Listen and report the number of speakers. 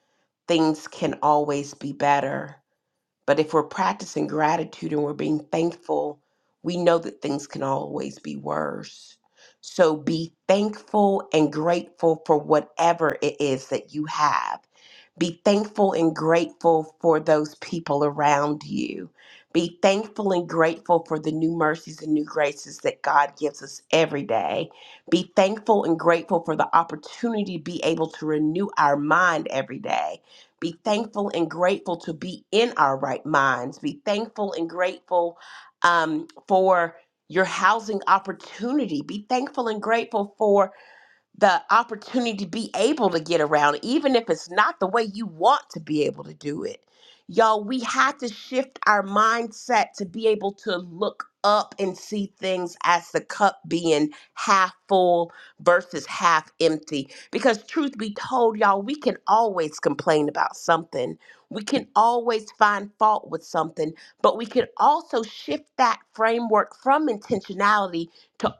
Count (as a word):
one